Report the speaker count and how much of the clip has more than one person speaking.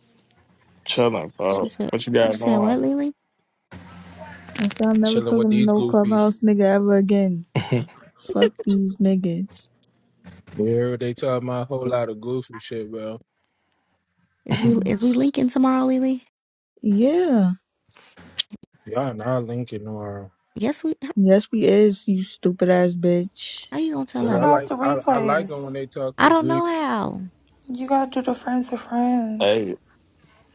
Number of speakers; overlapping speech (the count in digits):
5, about 14%